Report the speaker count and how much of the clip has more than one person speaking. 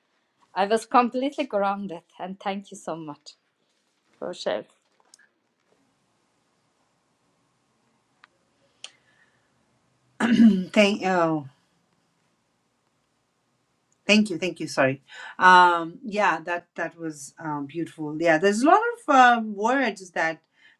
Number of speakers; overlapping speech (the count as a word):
two, no overlap